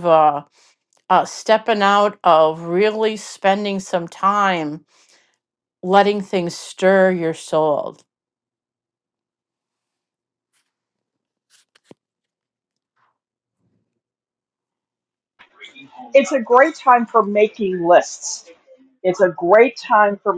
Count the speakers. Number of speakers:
two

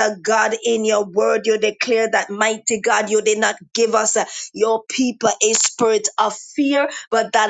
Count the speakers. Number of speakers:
one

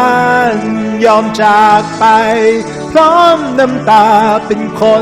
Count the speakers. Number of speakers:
one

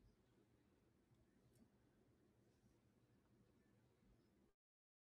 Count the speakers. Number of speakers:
zero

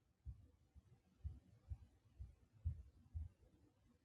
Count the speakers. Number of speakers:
zero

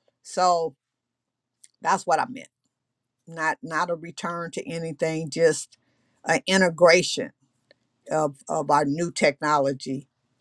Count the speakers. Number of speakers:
one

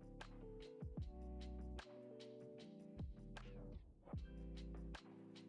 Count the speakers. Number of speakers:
zero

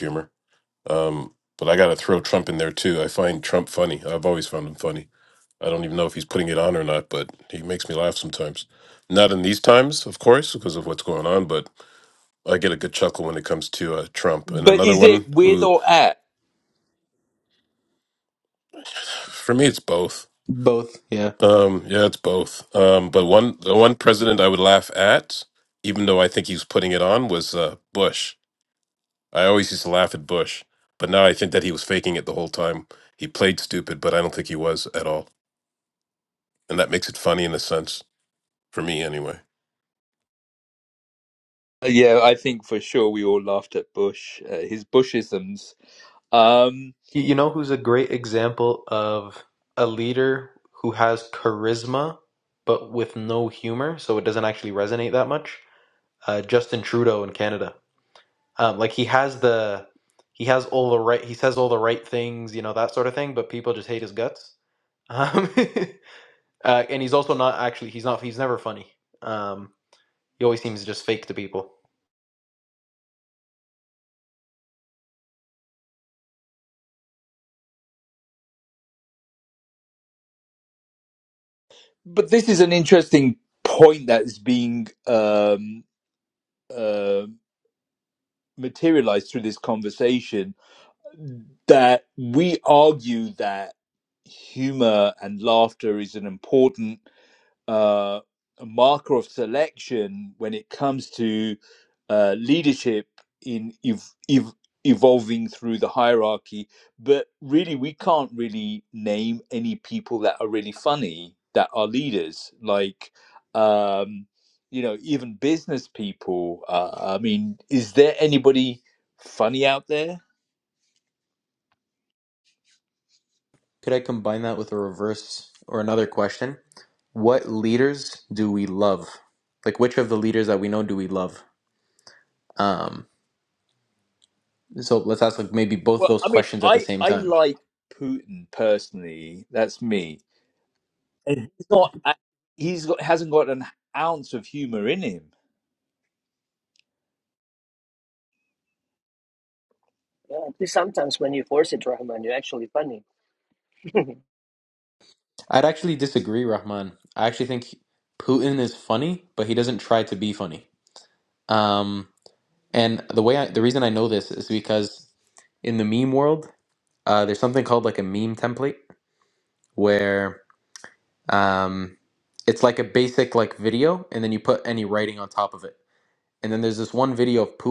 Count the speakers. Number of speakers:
four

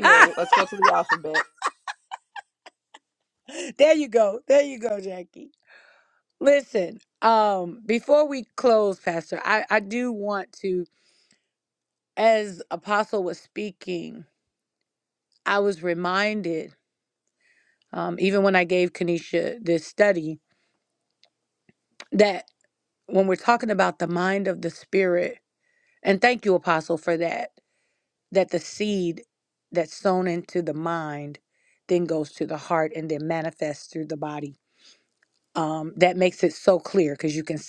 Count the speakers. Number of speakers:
two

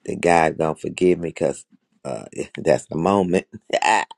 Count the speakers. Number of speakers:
one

